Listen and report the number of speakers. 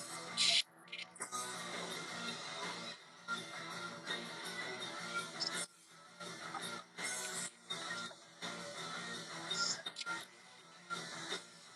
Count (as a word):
zero